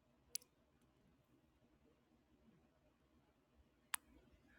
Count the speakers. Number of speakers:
0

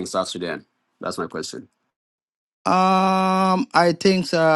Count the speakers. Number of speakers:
2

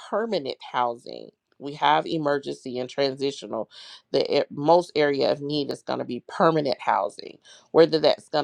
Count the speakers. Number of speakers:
1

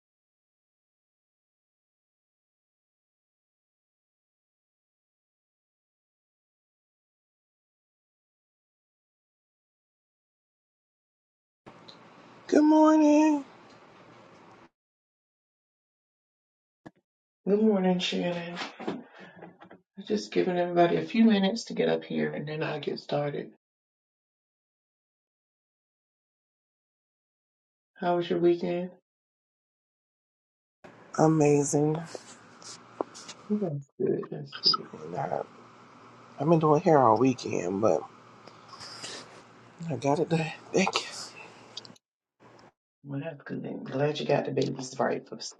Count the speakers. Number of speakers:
2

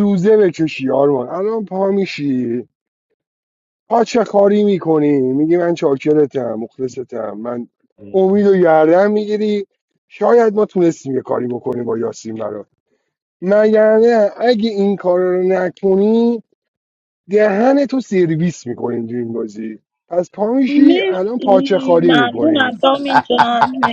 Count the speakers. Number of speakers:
2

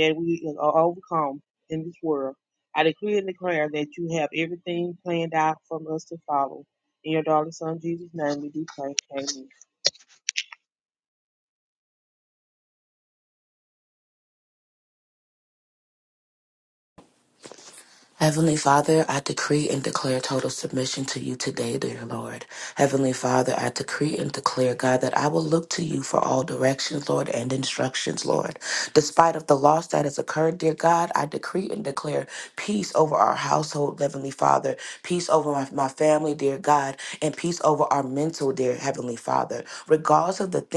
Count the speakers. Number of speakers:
2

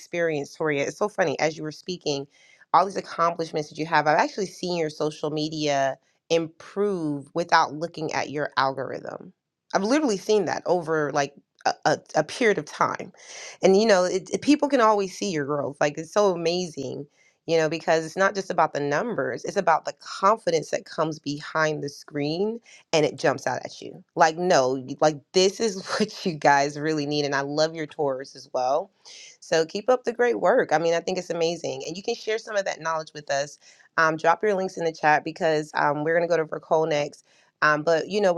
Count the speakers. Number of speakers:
1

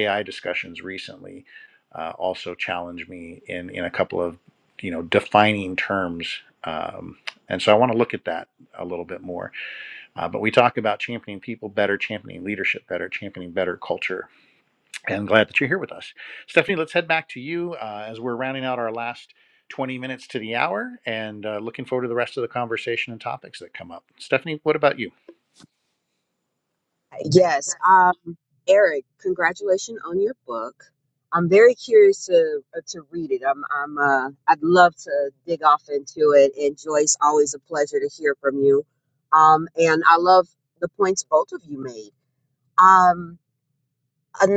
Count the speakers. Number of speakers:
2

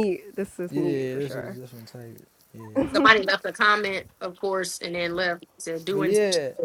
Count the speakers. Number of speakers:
3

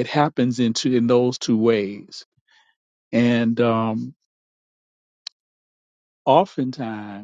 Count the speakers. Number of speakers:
1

